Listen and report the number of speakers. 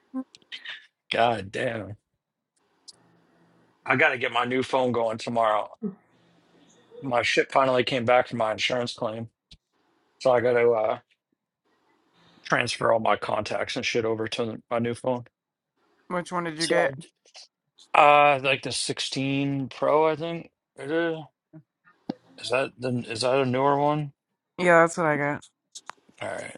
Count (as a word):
two